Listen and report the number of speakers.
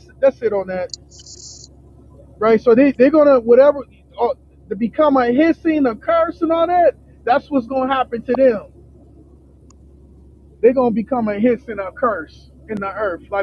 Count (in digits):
1